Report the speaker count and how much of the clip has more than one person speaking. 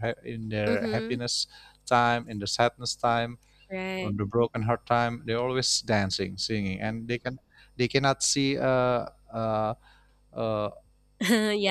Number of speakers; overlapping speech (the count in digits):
2, about 6%